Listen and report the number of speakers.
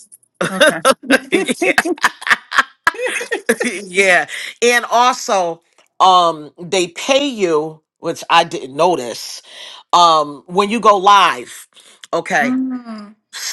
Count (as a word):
two